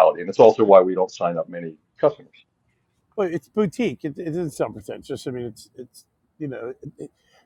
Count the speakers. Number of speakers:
2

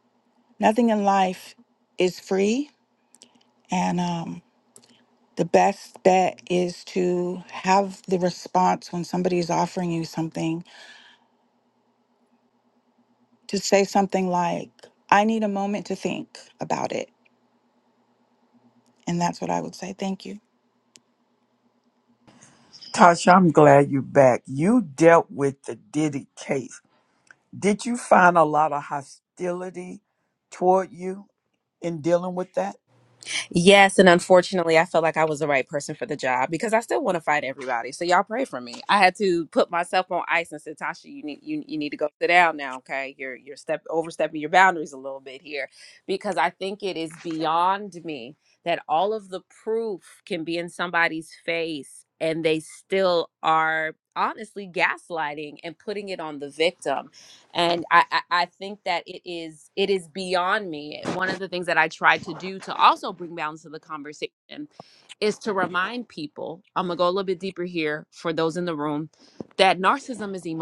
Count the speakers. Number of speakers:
3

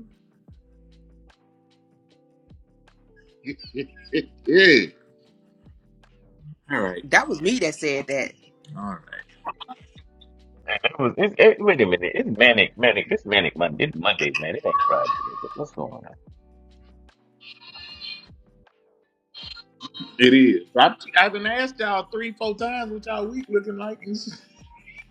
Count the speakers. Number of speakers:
3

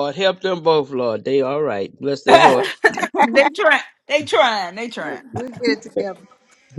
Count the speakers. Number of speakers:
3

